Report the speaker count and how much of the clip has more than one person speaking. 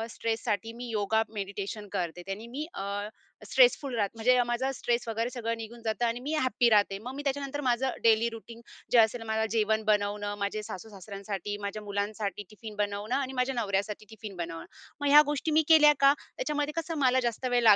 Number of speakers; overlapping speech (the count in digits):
1, no overlap